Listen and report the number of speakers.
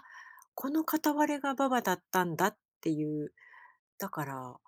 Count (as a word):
one